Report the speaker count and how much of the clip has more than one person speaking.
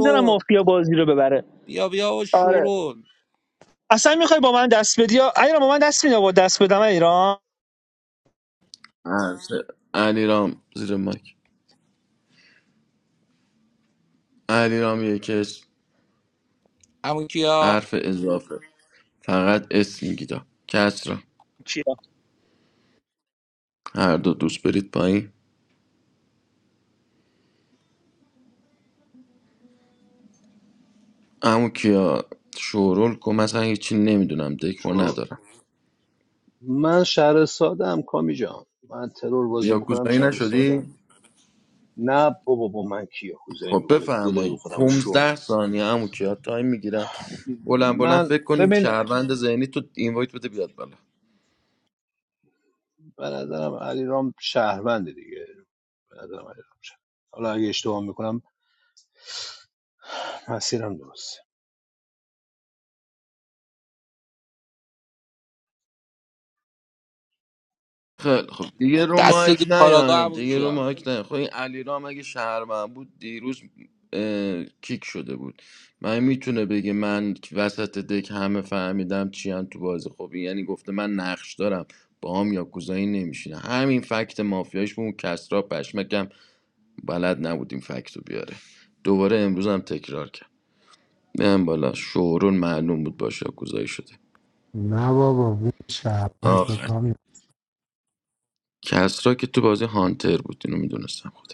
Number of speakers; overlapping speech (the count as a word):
five, about 7%